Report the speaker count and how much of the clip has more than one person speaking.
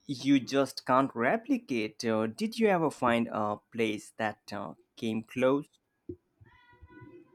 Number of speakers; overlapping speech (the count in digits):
1, no overlap